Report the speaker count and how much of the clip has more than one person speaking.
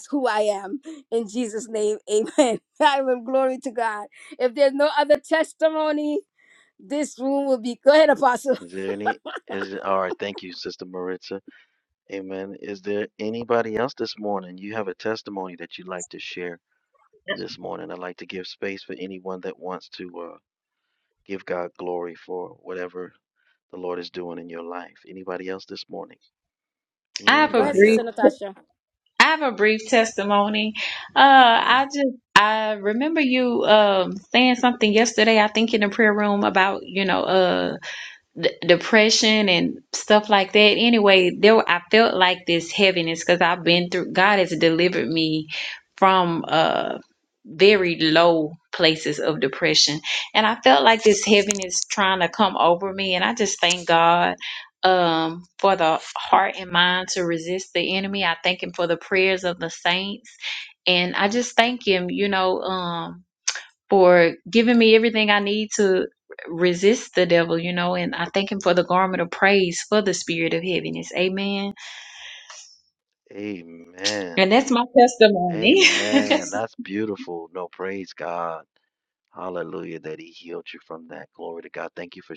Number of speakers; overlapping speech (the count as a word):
three, about 2%